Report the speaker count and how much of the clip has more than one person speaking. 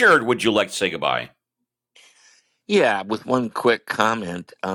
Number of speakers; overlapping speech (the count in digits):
2, no overlap